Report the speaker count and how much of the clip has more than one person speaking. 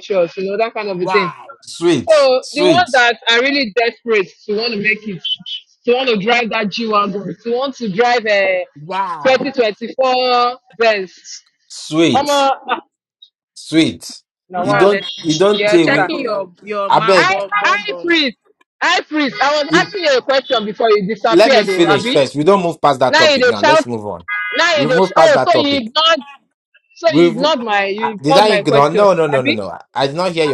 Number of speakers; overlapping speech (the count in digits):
4, about 26%